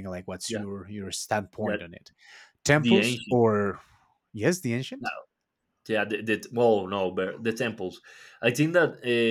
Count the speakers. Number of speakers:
two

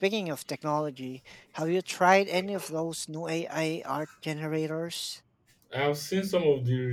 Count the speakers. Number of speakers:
two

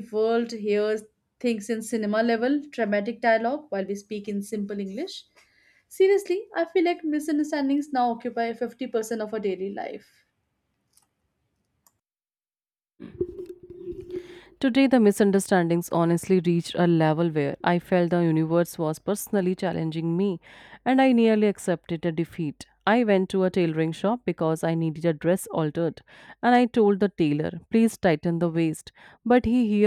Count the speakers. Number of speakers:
two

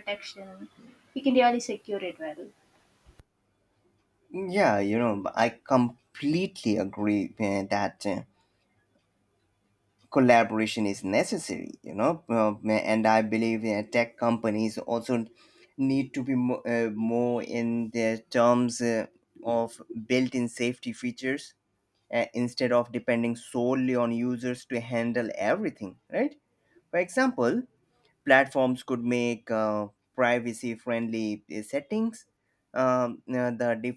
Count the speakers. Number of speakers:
two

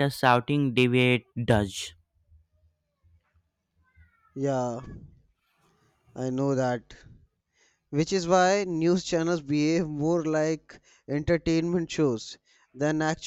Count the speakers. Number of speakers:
two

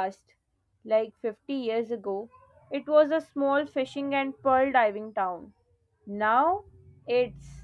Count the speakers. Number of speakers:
one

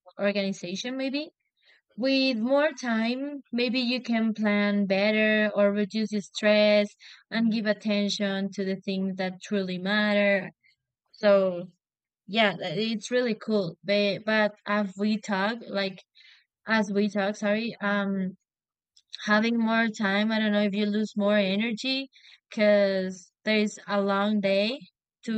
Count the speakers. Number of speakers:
one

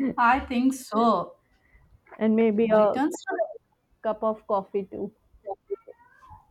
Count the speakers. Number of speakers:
two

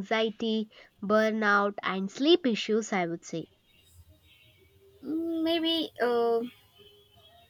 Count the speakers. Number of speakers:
two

